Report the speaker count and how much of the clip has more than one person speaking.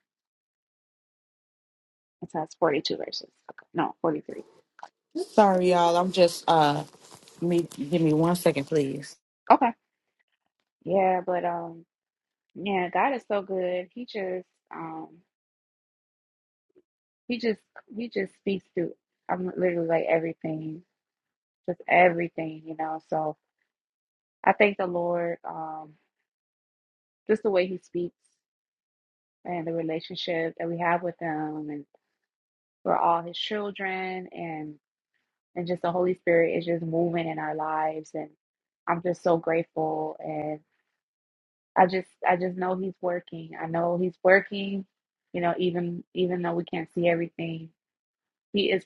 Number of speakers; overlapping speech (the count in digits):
2, no overlap